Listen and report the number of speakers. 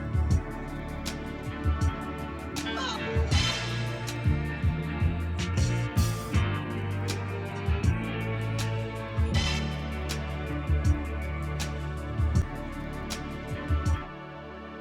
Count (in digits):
0